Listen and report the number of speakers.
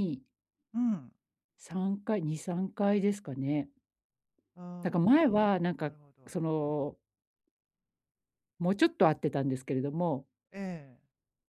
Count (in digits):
2